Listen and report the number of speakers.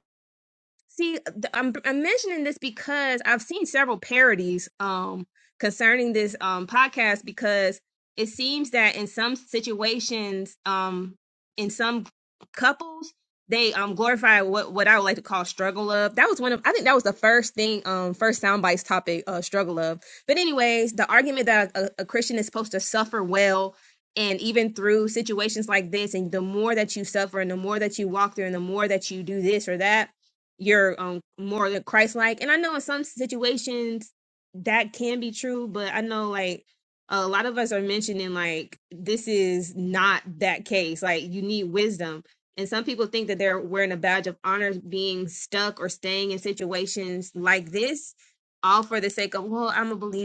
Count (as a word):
one